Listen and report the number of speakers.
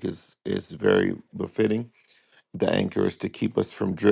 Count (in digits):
1